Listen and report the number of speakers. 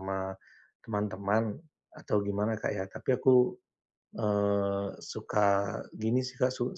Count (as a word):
one